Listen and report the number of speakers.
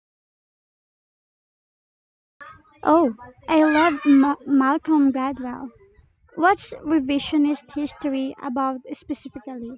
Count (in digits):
1